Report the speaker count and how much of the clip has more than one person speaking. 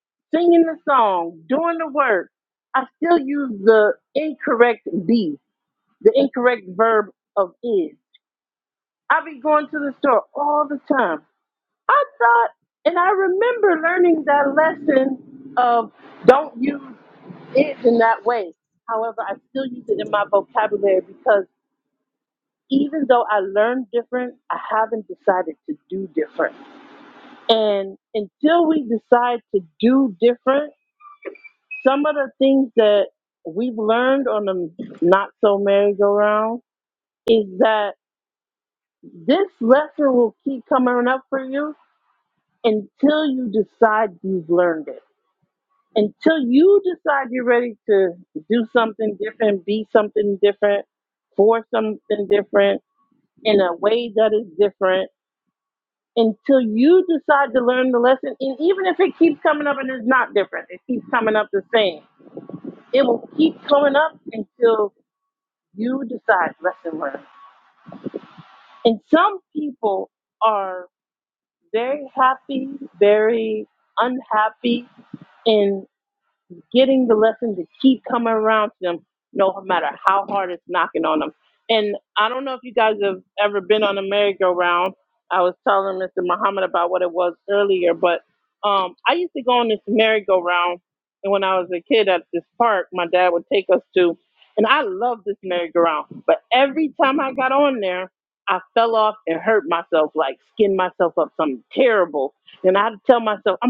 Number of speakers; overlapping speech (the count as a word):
one, no overlap